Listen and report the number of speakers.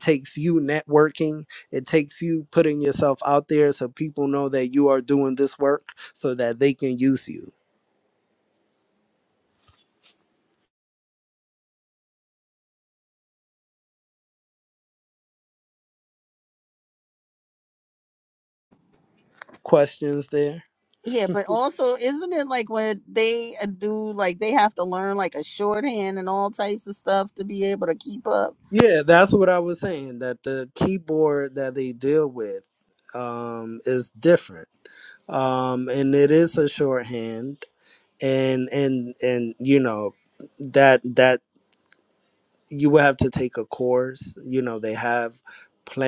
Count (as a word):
two